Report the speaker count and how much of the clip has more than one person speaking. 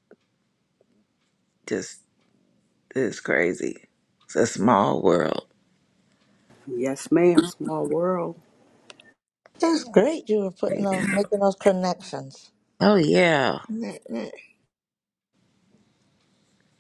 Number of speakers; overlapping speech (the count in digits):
3, about 3%